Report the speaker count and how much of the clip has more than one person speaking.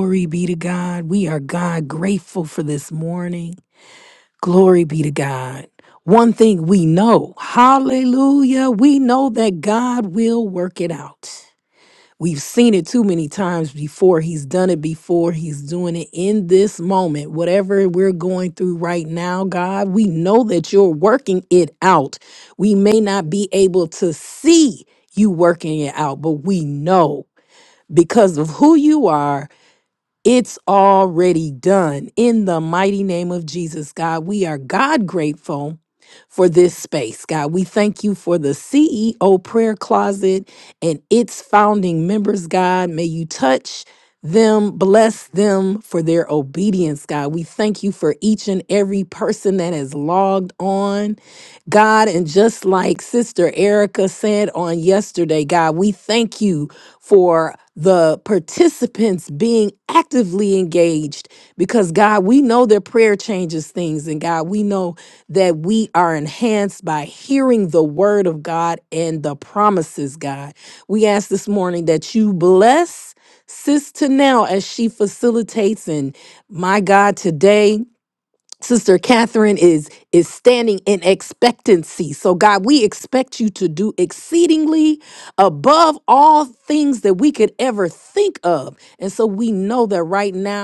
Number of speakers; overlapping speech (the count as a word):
one, no overlap